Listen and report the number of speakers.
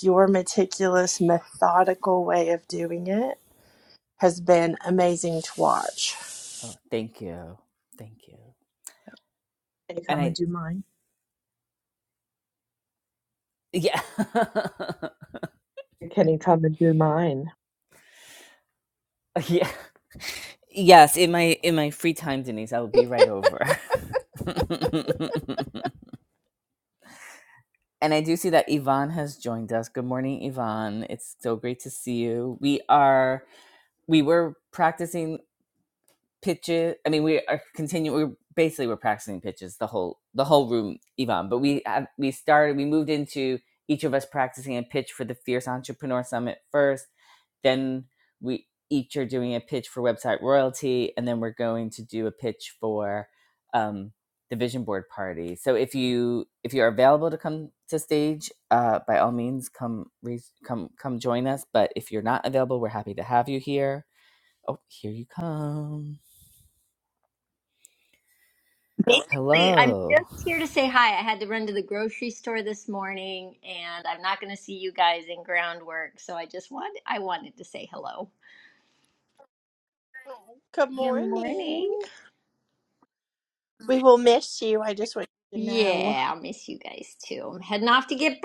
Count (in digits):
4